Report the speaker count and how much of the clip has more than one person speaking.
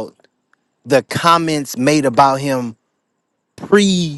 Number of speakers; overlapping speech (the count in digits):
1, no overlap